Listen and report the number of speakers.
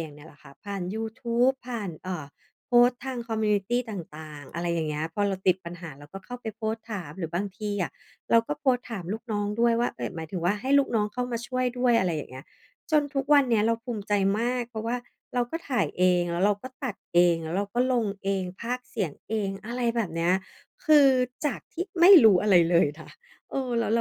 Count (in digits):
1